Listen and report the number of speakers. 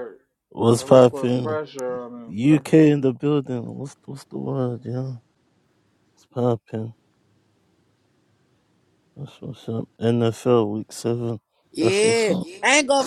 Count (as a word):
three